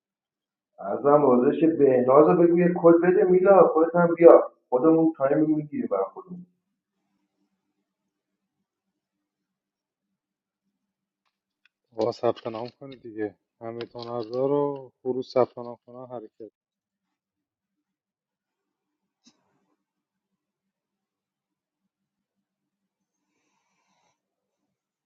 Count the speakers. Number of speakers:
2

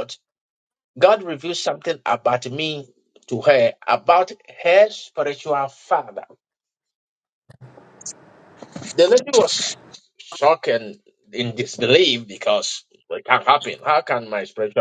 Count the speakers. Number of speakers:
1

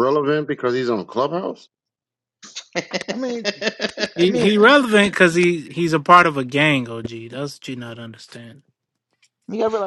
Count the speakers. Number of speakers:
3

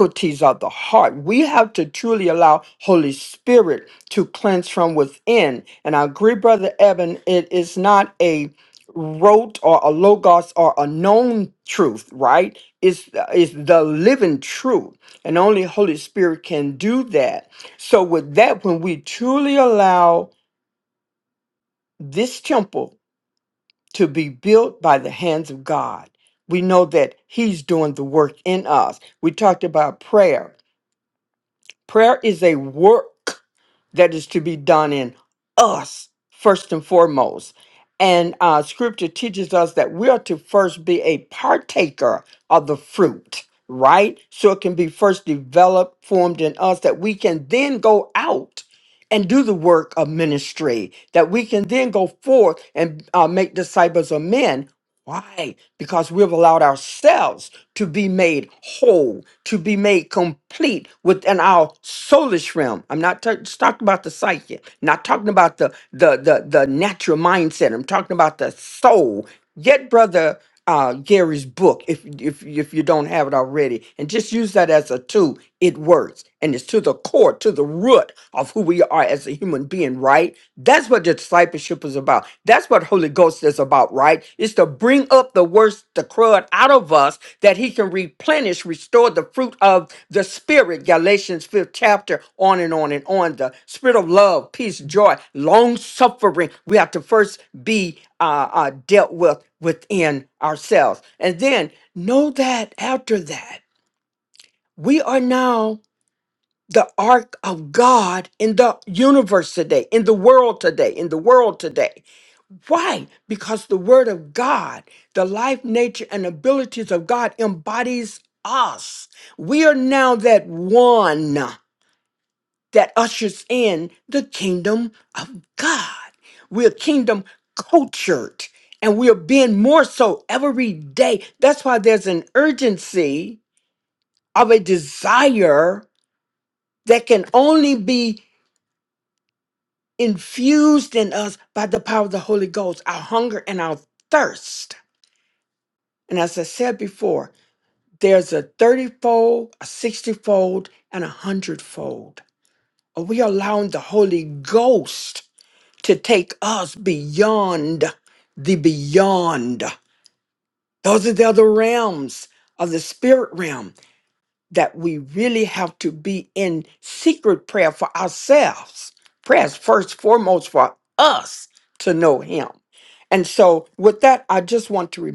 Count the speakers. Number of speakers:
1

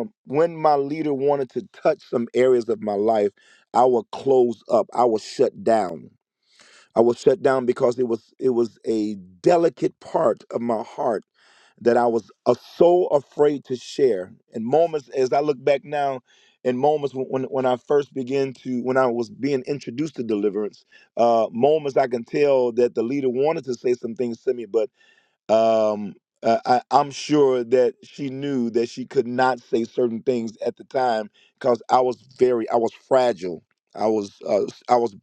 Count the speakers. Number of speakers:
1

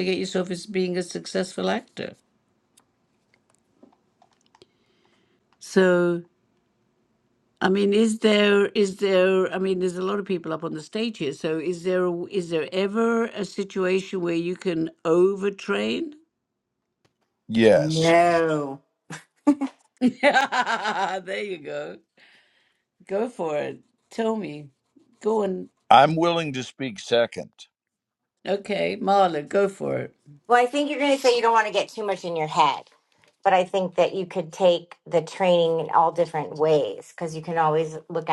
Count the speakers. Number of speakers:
3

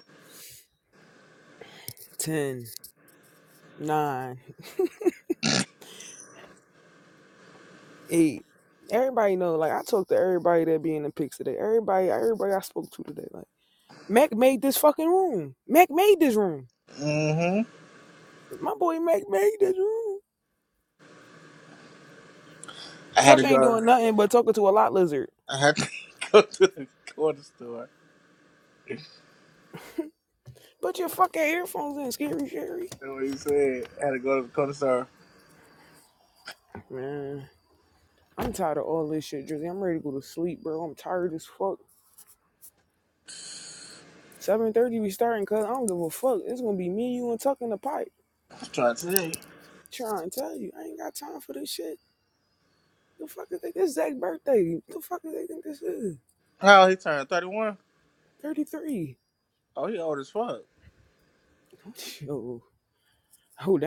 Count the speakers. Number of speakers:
2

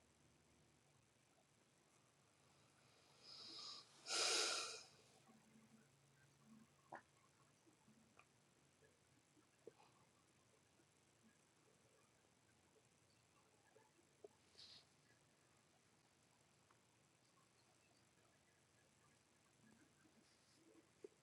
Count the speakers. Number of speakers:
0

